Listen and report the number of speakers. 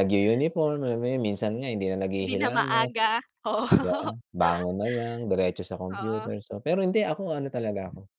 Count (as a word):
two